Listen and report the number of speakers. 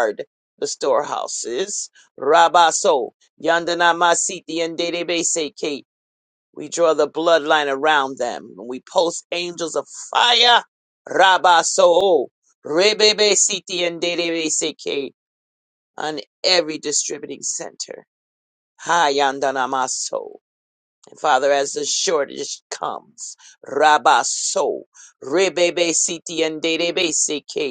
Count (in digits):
1